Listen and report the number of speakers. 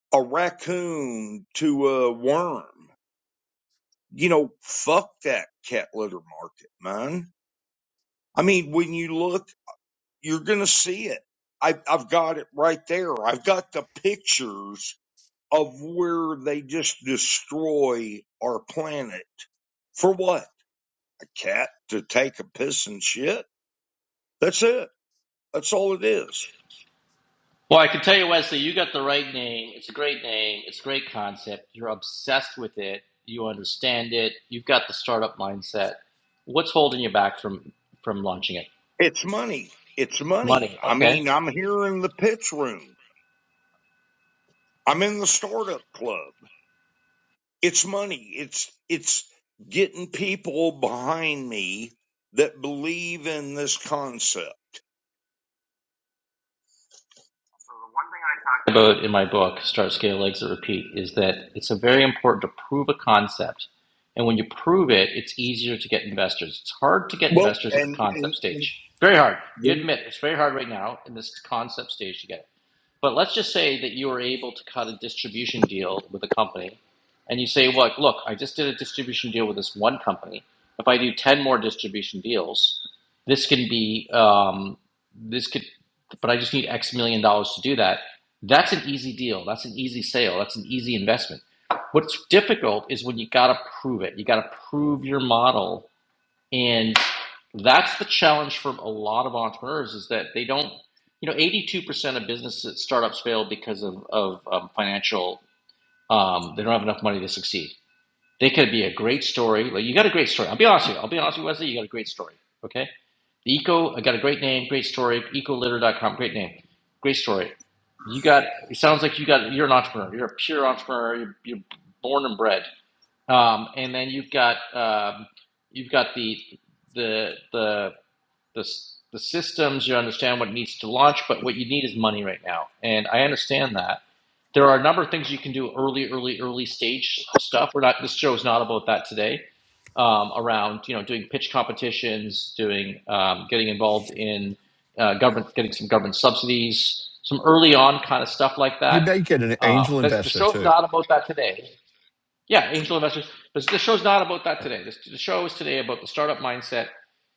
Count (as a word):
three